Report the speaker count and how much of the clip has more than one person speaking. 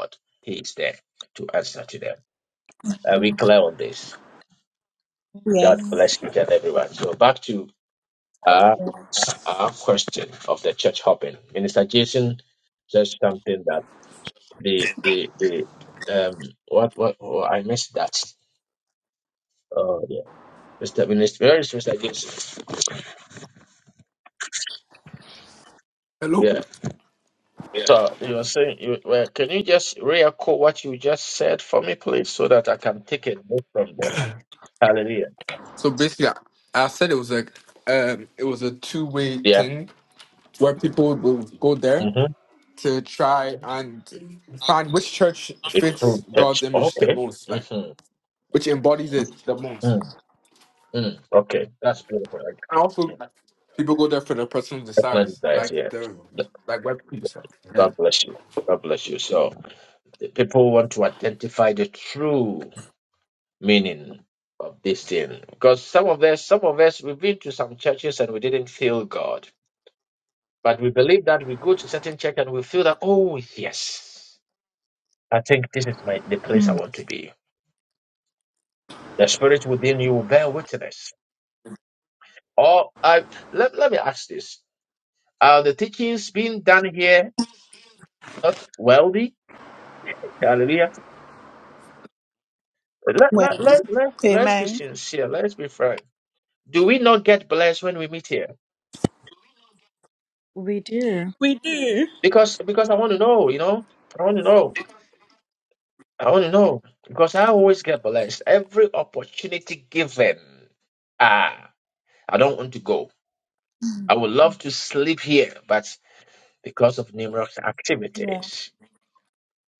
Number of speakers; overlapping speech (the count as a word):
four, about 4%